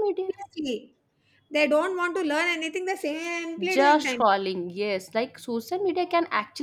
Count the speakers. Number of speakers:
2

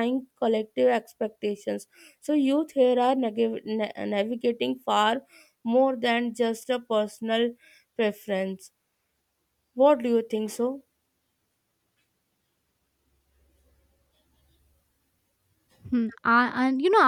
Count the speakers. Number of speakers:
2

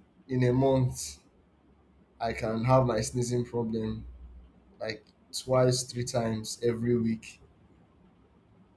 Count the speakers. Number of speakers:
1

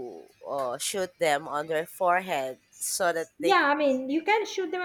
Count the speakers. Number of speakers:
2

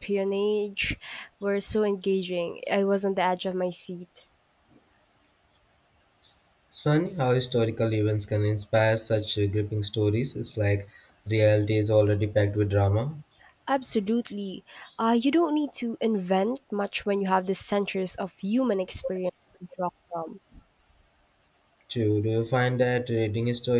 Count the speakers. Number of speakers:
2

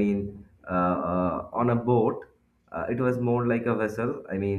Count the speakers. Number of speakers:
1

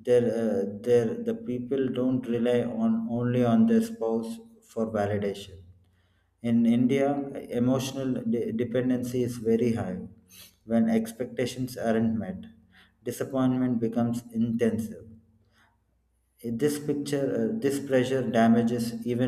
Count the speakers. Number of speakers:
1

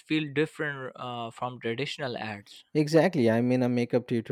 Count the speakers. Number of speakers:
2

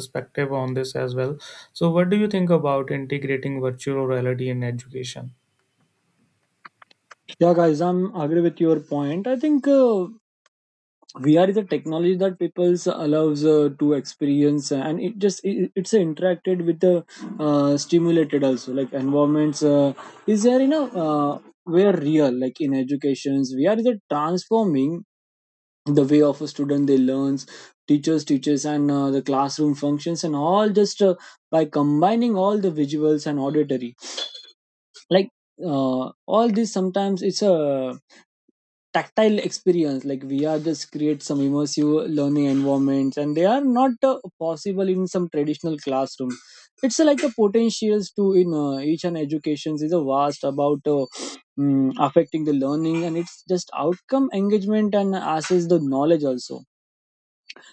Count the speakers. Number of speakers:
2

